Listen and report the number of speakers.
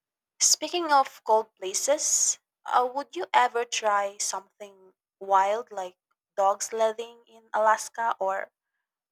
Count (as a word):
one